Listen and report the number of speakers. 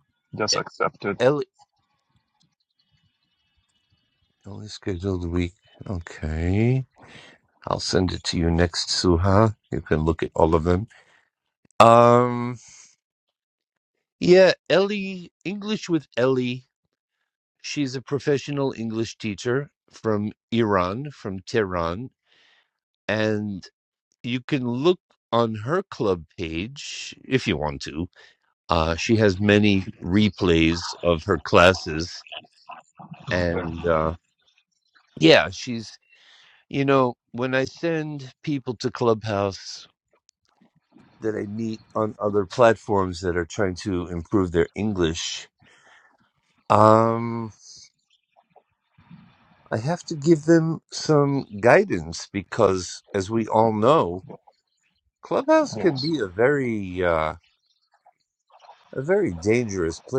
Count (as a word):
two